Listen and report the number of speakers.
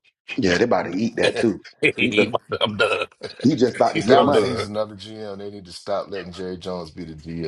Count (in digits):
3